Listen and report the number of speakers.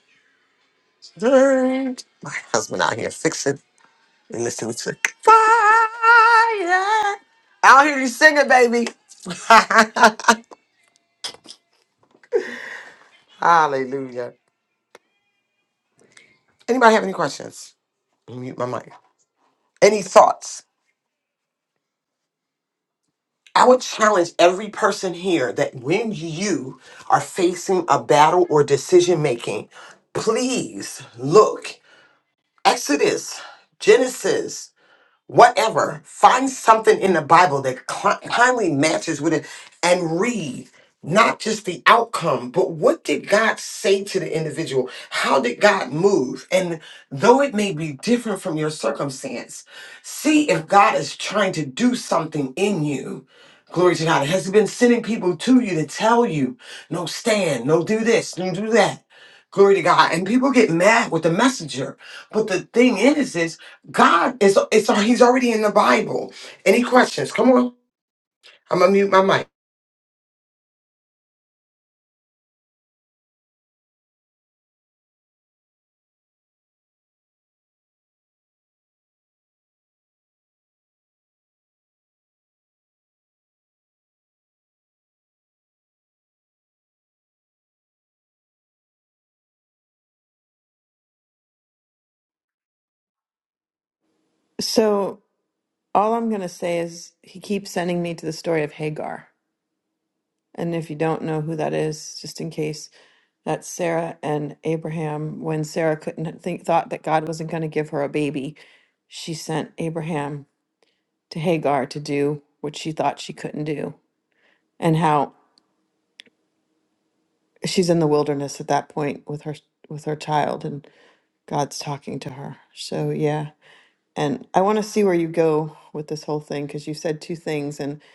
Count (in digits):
2